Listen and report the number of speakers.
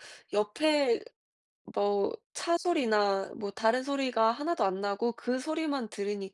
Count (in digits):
1